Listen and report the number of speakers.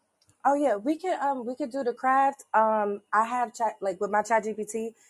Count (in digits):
1